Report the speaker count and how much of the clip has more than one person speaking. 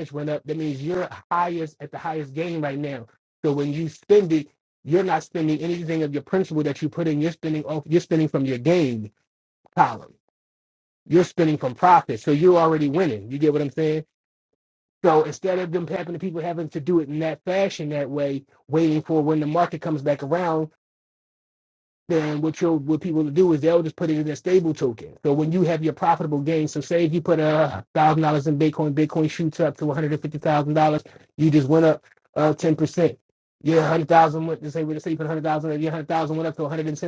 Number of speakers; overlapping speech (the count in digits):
1, no overlap